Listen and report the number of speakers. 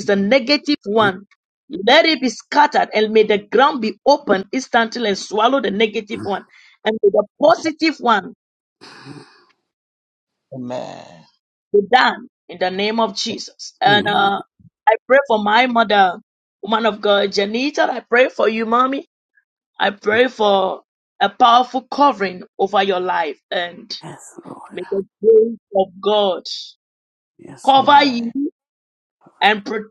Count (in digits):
3